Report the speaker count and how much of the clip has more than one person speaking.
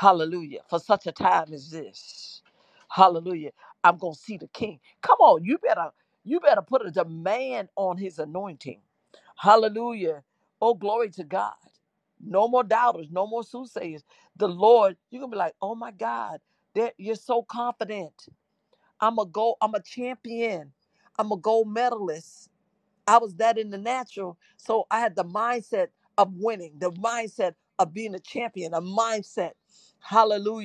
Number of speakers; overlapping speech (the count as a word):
one, no overlap